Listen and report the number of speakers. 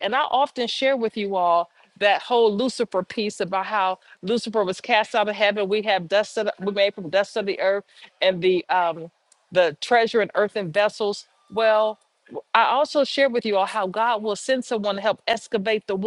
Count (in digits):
1